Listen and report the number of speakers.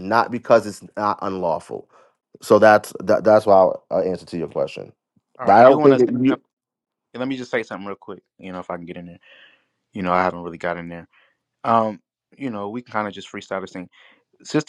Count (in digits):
2